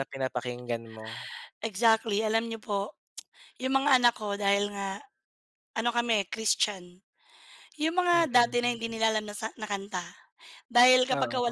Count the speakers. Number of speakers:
2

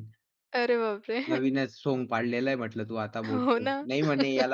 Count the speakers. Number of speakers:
2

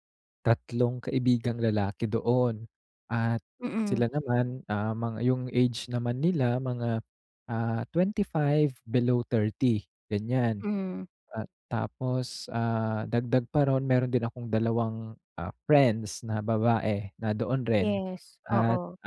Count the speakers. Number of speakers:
2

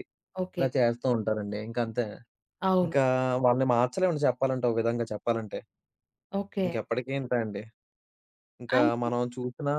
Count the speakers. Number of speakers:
2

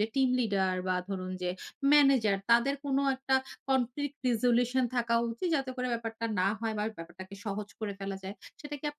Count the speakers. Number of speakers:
1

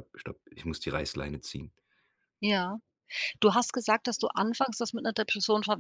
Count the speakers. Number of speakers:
2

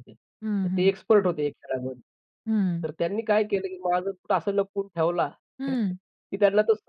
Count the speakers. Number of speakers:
2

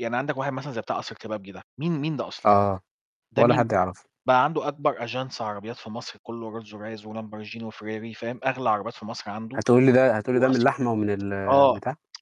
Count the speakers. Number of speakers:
2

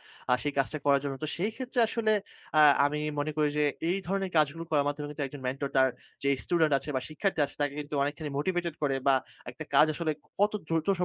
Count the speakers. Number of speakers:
1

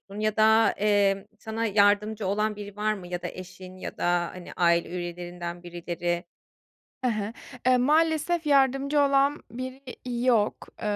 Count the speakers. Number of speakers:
2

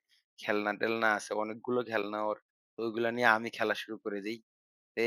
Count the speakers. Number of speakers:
1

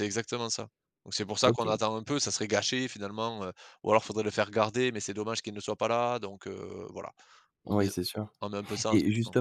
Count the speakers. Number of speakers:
2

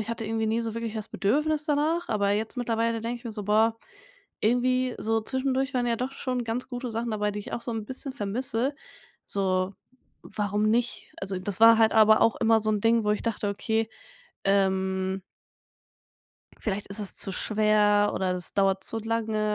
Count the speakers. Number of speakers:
1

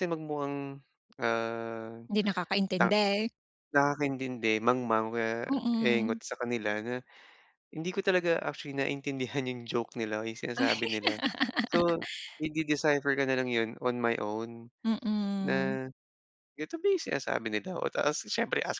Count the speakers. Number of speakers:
2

